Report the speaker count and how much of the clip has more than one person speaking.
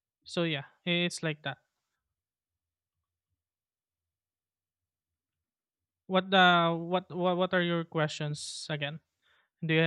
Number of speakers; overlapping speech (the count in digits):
1, no overlap